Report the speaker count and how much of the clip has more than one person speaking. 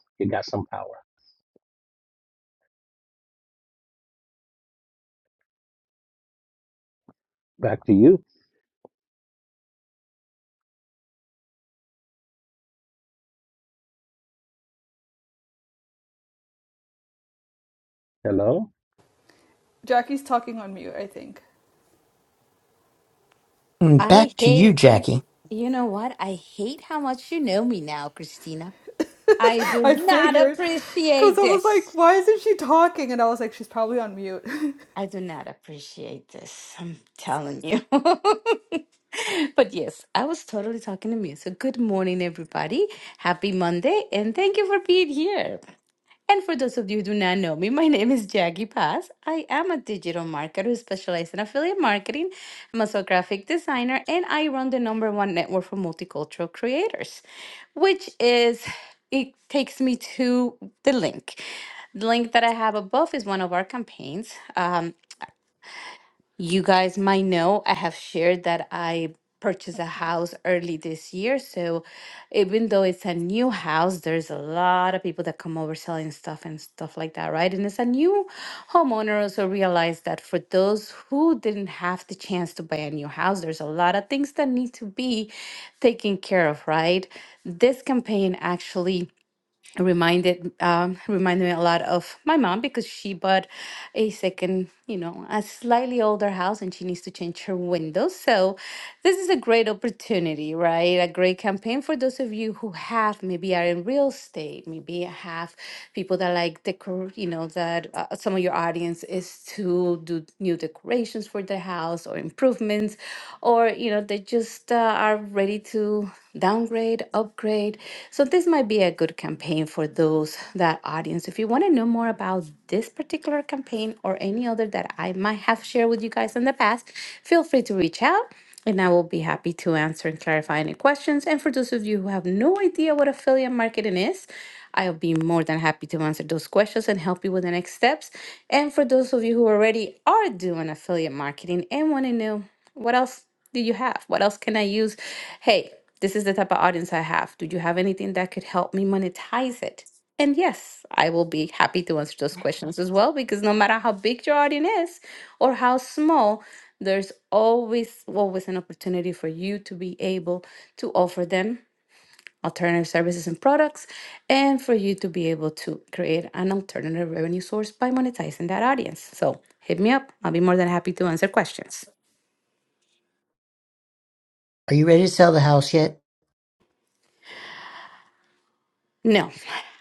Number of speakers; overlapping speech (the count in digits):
4, about 1%